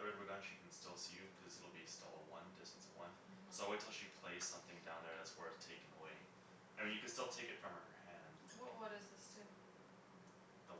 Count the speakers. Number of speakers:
2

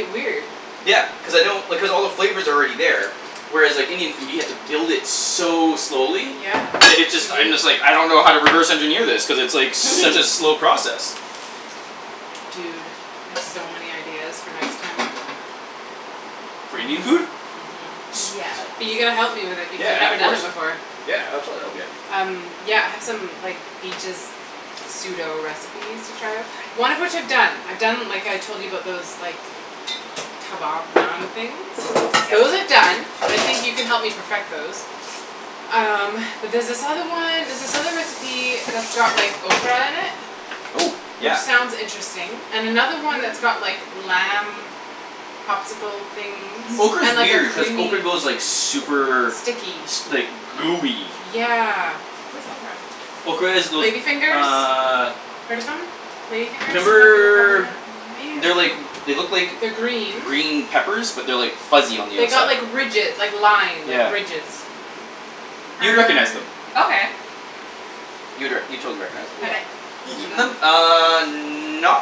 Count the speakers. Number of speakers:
3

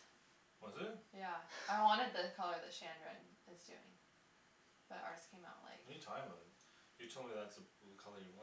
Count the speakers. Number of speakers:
2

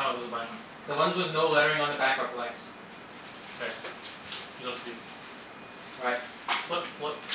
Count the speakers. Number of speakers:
2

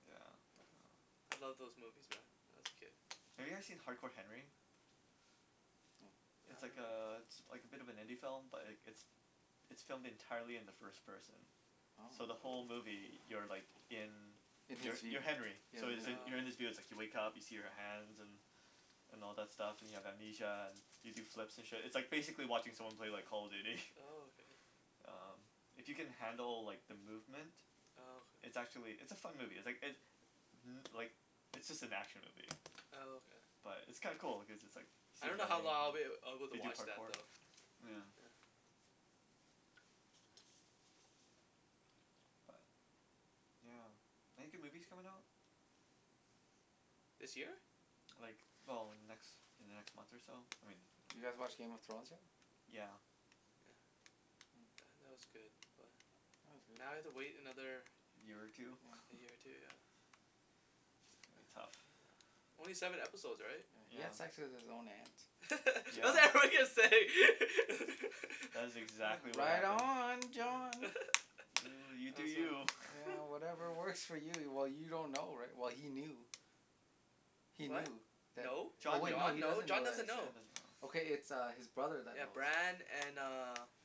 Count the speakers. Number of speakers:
3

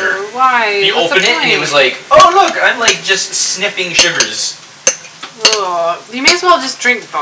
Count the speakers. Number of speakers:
2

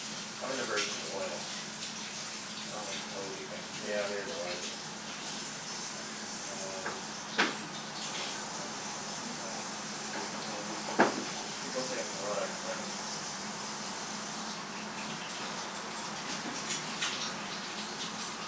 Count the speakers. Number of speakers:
2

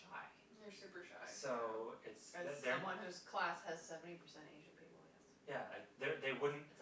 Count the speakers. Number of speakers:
3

